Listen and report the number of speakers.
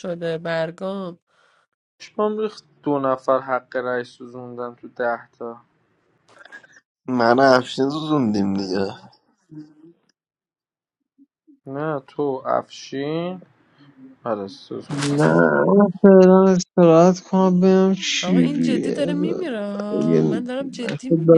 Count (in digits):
4